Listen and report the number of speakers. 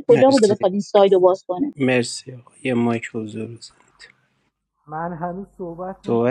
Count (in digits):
3